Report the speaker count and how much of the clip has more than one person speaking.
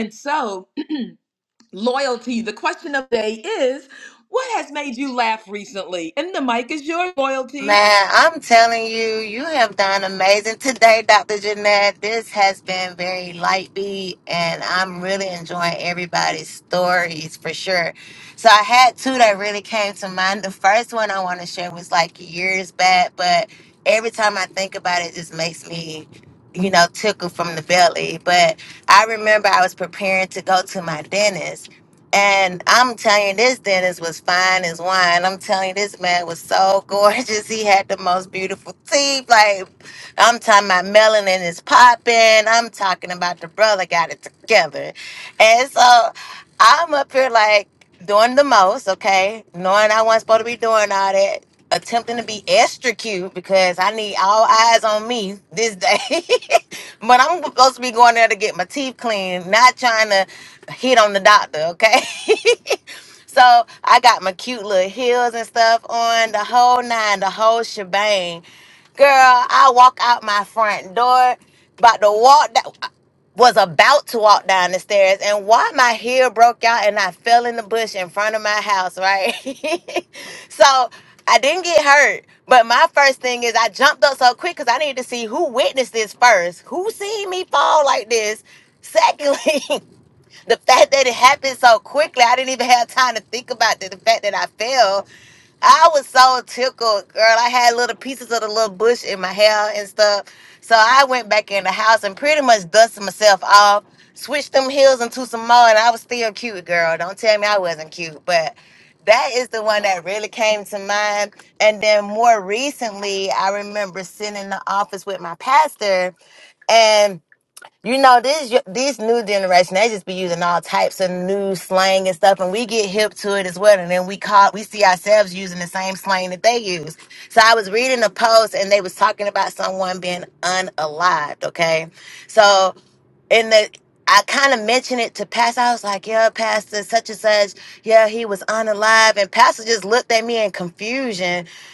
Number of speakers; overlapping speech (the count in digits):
2, under 1%